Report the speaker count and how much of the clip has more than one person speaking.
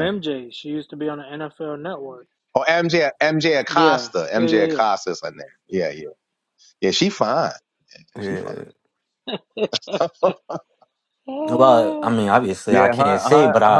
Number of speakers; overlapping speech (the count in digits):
3, about 23%